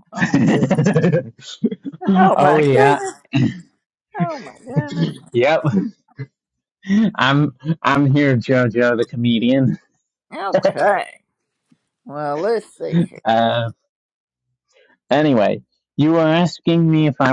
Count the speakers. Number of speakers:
2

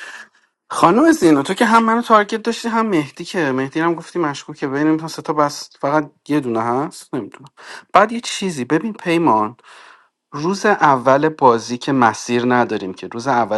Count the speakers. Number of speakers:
1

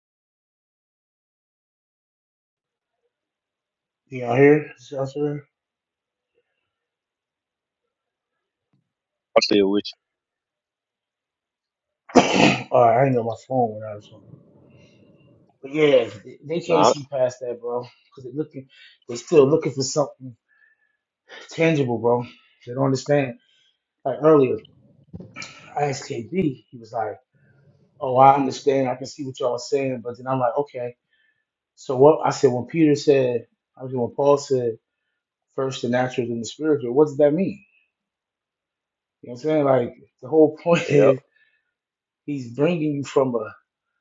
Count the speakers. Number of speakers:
2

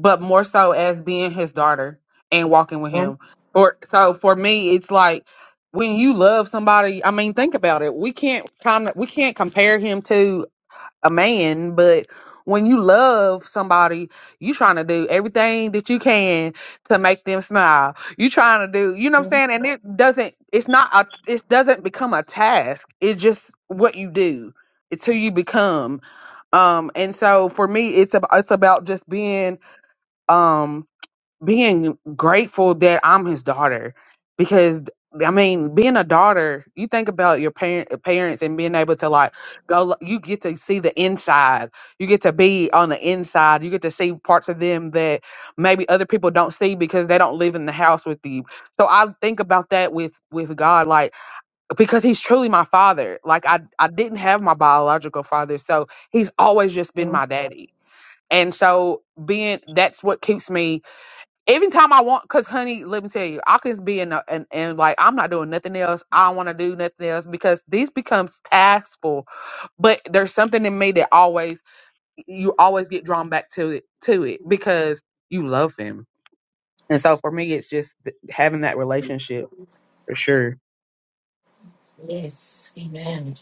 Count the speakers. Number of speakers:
2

